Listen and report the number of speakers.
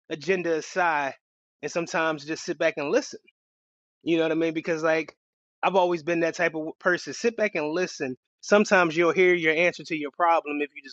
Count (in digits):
1